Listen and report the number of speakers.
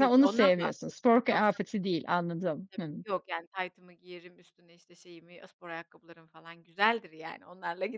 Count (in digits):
2